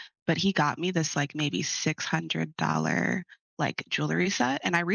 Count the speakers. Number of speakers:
one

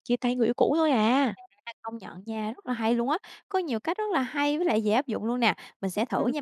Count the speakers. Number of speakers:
two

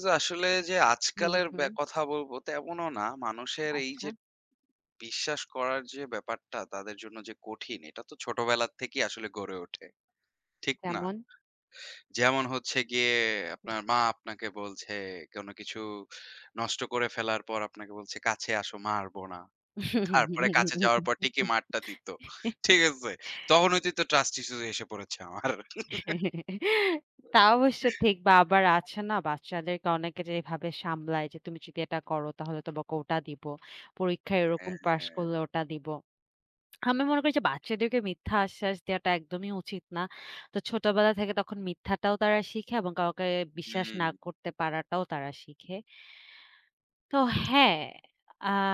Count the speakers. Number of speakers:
two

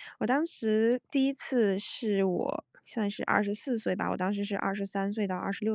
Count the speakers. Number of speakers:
one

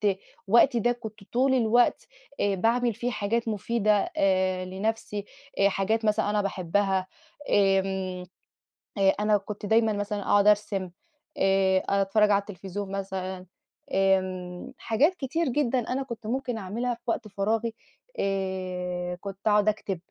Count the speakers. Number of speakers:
one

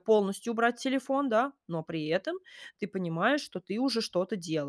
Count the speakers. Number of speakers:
one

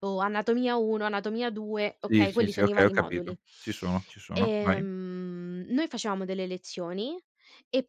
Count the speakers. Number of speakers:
two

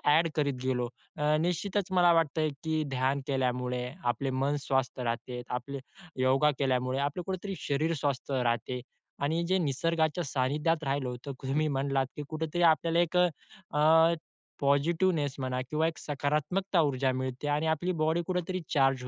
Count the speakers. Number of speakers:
one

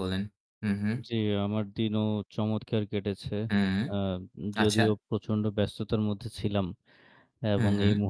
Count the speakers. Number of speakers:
two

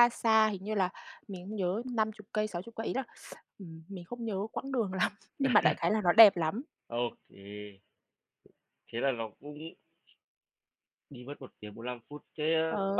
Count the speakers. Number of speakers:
two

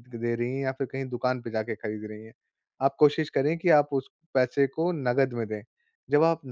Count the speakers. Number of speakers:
one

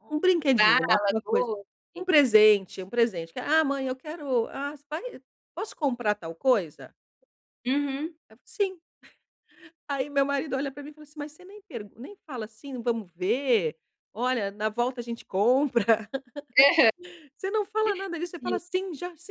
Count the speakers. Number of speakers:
two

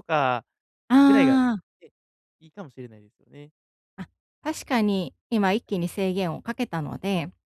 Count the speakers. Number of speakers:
two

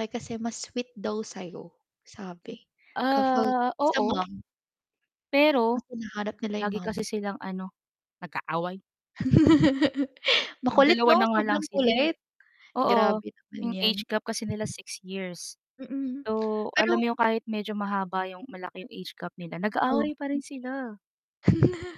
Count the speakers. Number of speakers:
two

